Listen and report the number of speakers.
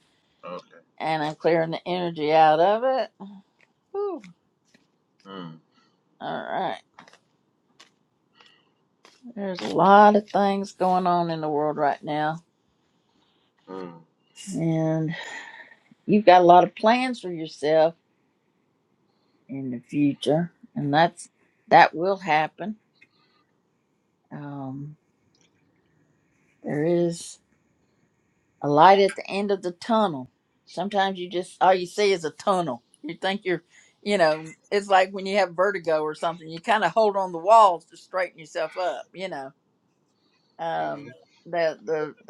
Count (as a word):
two